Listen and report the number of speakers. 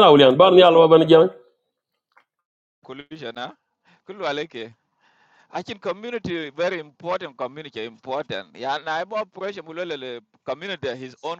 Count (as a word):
two